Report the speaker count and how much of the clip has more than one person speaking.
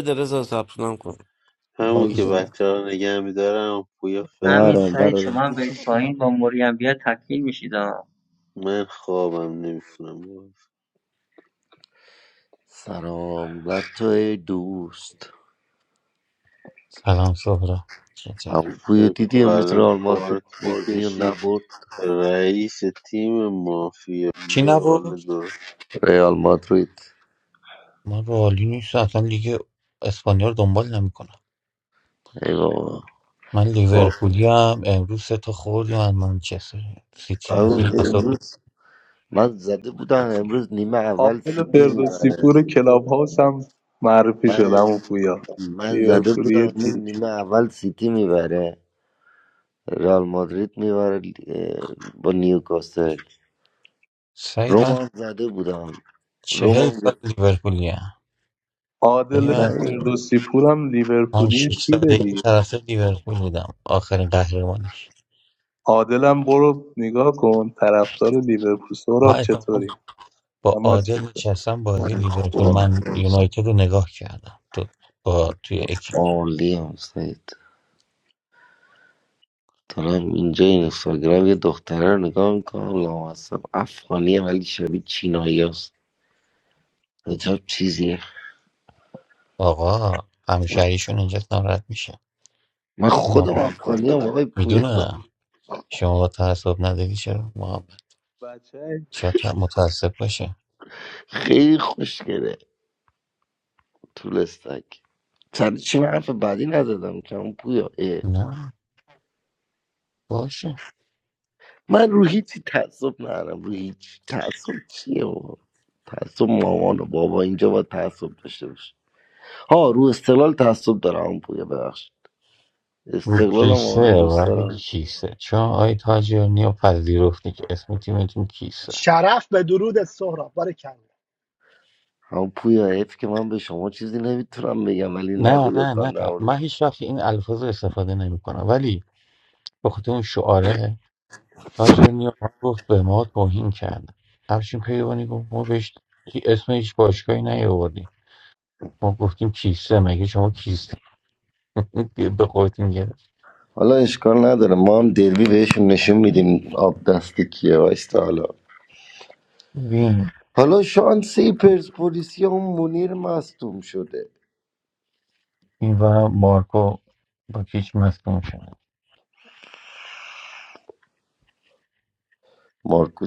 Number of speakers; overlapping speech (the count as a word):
seven, about 10%